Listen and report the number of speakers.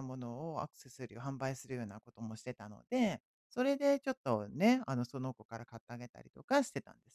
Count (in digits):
1